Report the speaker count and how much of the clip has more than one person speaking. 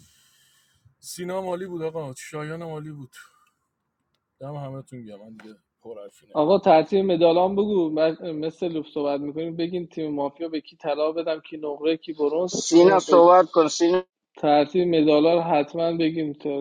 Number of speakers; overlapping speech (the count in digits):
3, about 5%